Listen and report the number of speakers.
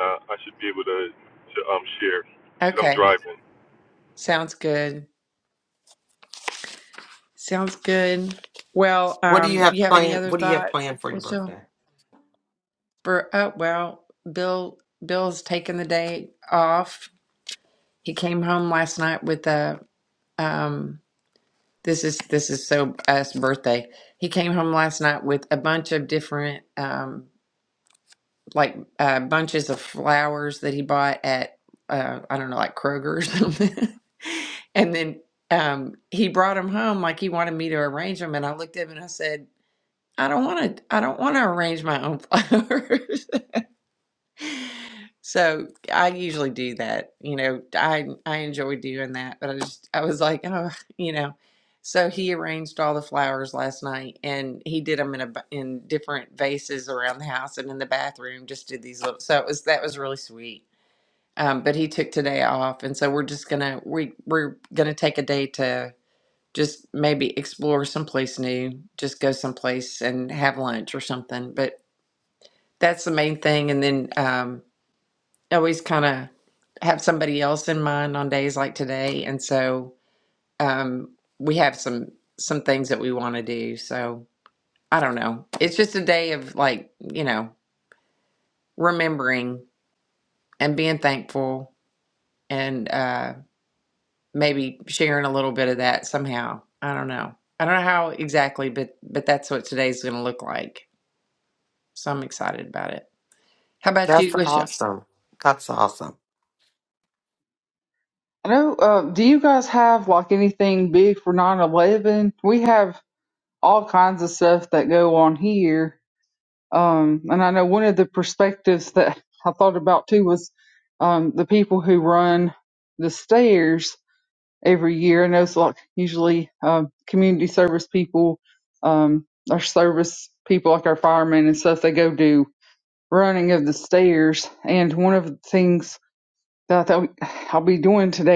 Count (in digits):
4